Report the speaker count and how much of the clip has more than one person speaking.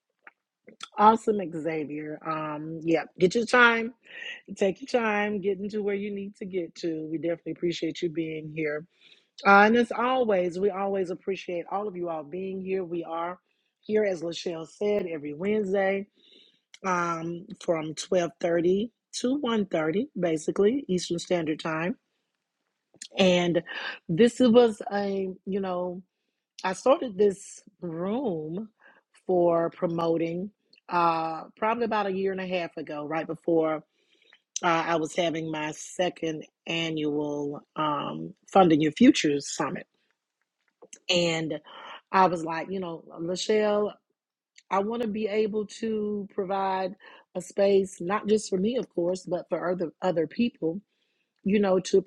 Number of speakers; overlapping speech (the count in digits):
1, no overlap